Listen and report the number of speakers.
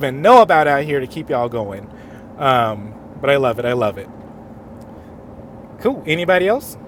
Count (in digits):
1